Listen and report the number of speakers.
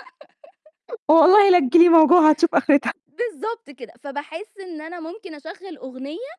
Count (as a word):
two